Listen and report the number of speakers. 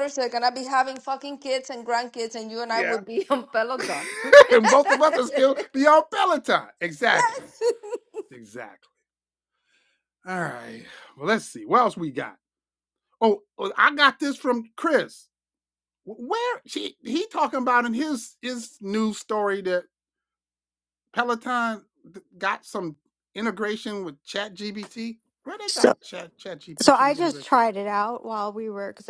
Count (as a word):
three